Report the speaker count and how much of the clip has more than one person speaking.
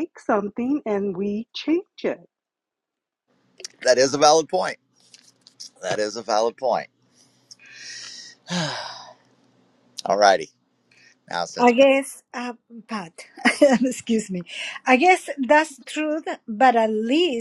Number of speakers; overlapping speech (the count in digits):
3, about 2%